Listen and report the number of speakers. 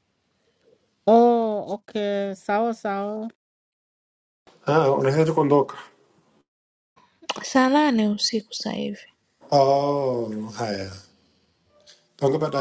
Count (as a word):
three